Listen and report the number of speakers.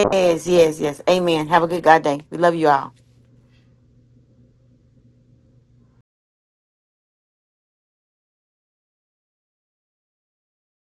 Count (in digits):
1